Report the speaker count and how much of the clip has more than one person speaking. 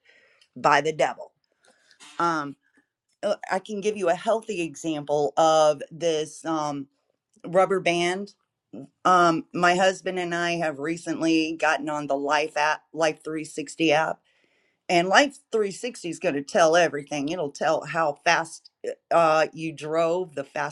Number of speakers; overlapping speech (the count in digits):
1, no overlap